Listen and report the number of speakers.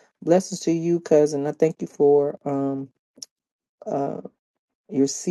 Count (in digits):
1